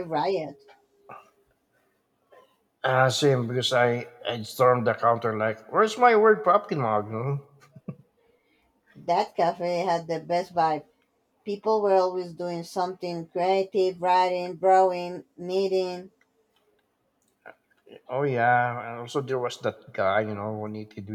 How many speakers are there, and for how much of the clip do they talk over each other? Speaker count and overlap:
two, no overlap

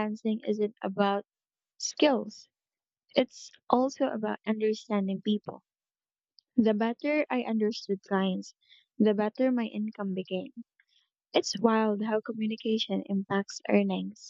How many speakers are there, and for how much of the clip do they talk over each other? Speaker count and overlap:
one, no overlap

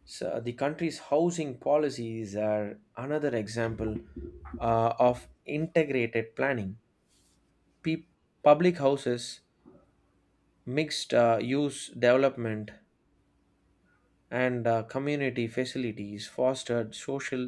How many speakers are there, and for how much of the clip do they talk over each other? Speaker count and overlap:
one, no overlap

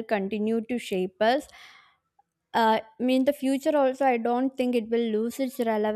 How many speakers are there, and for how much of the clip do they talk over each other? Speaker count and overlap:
one, no overlap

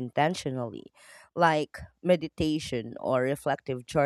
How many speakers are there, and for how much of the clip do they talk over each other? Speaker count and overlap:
one, no overlap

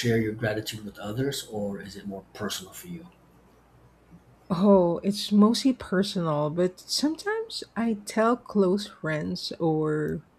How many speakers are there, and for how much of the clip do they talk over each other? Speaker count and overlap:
two, no overlap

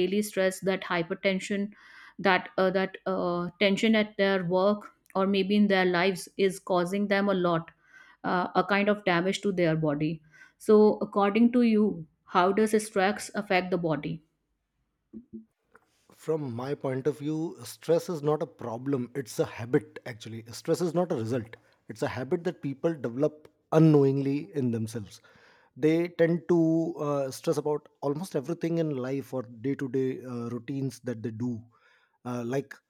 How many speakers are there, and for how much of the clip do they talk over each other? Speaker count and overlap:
two, no overlap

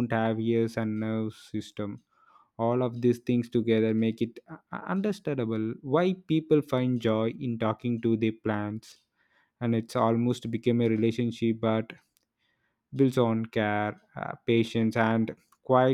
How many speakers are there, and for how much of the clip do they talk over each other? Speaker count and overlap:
one, no overlap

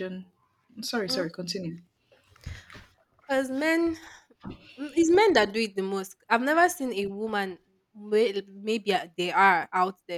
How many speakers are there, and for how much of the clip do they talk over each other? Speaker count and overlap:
two, about 2%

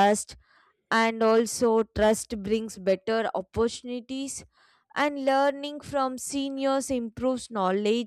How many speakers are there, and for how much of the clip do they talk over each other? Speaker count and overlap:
one, no overlap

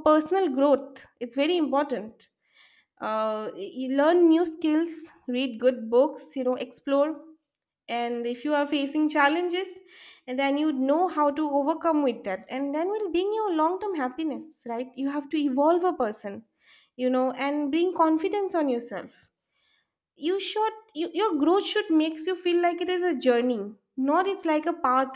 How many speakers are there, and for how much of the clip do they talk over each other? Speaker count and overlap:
one, no overlap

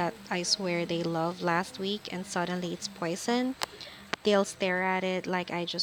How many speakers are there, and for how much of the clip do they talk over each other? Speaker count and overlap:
one, no overlap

